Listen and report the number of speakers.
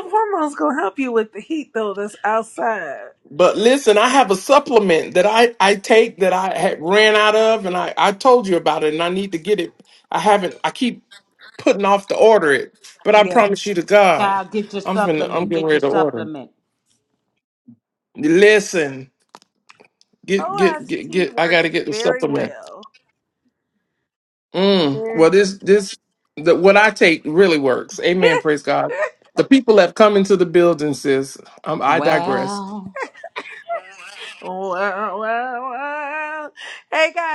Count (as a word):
three